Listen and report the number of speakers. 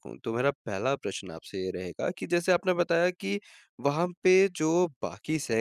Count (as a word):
one